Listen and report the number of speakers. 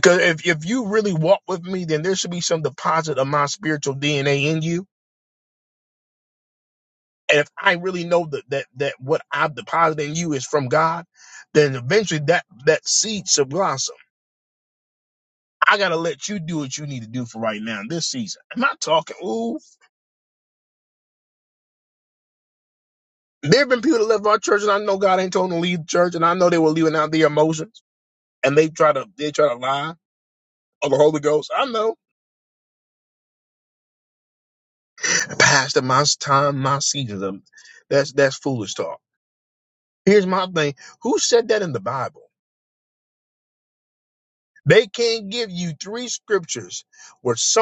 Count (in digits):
1